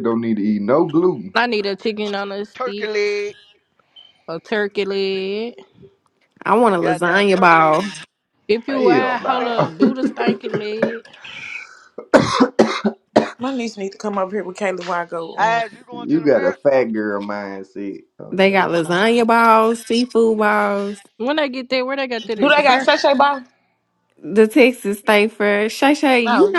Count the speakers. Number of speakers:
5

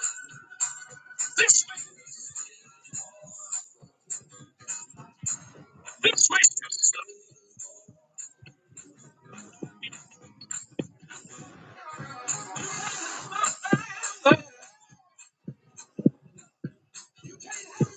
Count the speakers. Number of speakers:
0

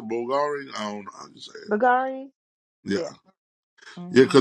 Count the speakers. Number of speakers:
2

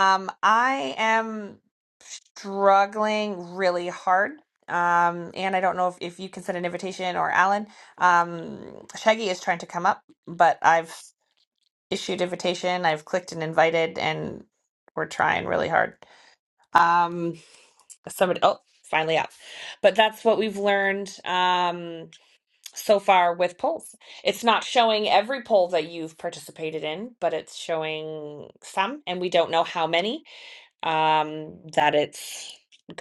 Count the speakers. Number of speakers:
1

